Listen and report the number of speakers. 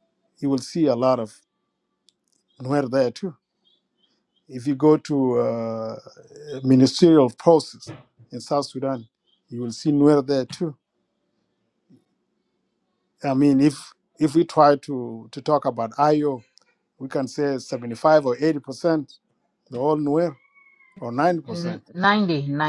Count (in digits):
2